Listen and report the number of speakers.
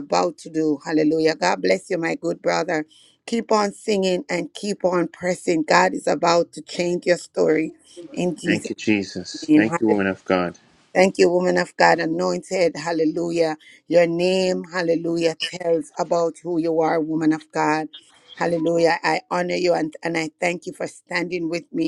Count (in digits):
2